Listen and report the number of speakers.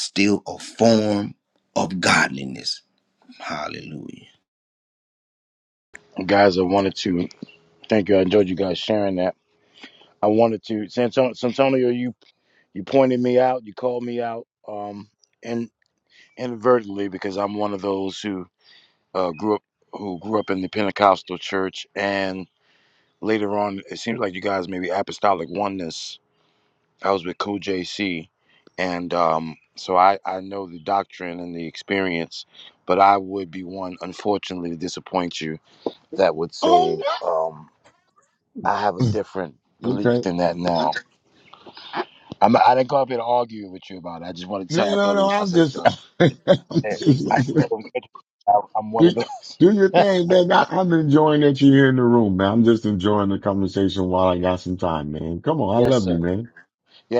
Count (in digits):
3